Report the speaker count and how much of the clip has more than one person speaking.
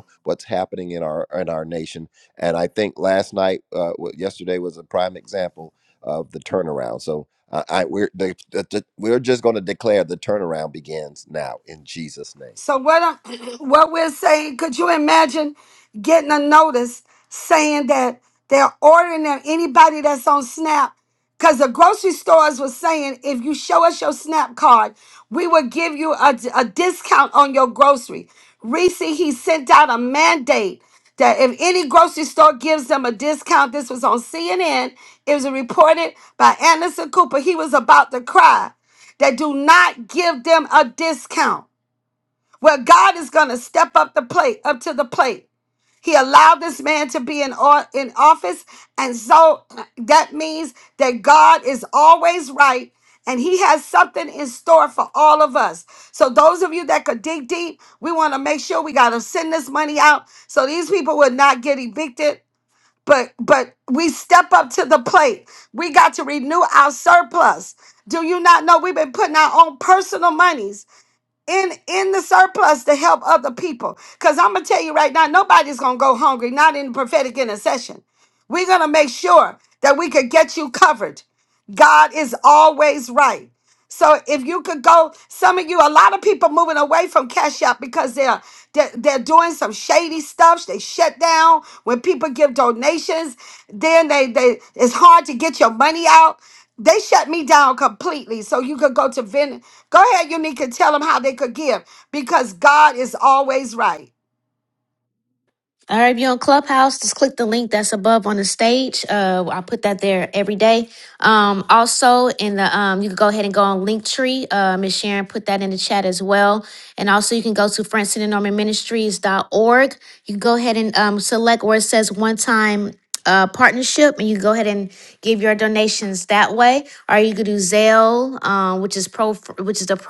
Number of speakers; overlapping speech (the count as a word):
three, no overlap